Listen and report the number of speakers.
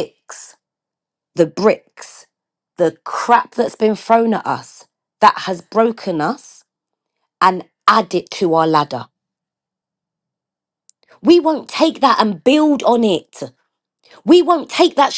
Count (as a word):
one